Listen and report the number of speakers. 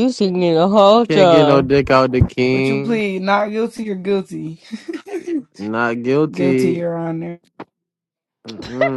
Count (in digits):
3